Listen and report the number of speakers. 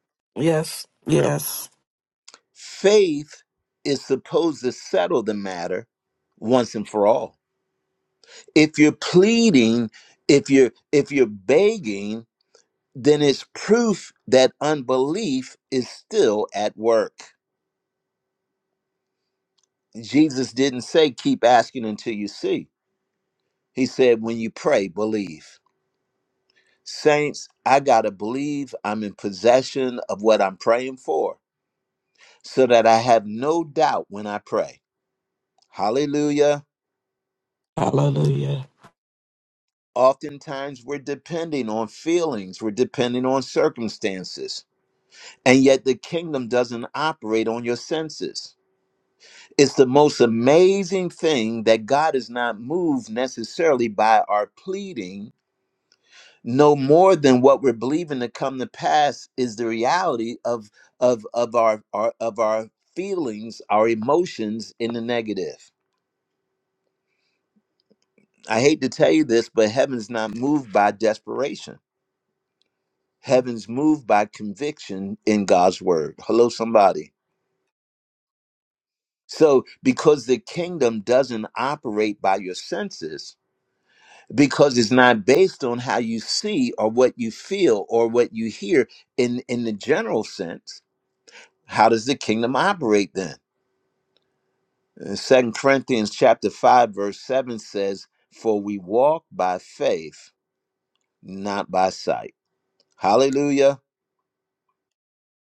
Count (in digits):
2